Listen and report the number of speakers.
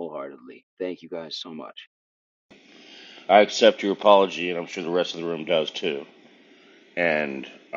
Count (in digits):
2